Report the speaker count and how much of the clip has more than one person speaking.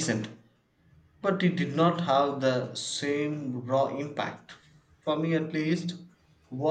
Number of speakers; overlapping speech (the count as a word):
one, no overlap